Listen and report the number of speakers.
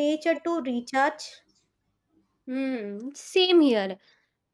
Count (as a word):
two